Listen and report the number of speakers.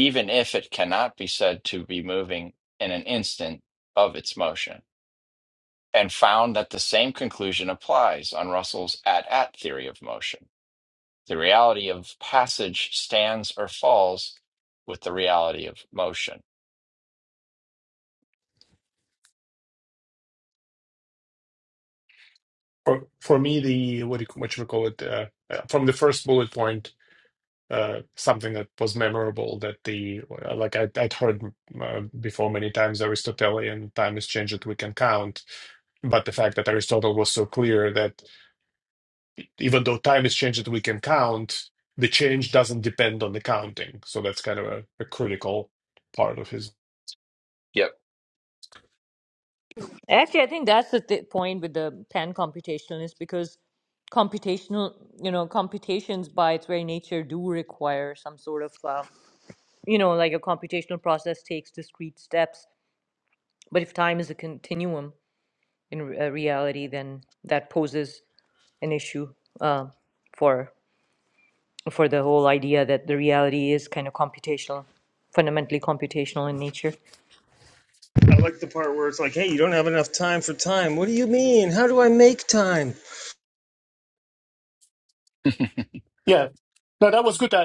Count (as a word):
four